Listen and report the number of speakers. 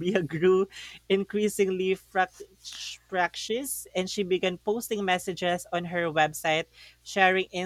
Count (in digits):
1